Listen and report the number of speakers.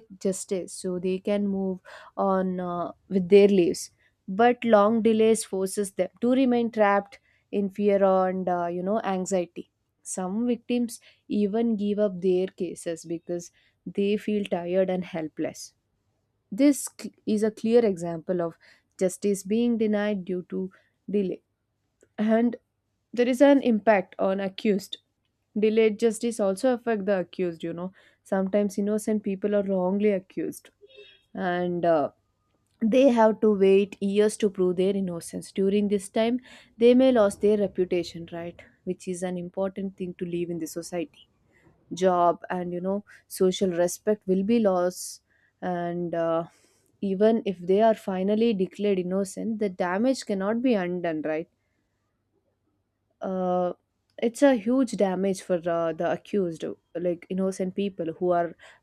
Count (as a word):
one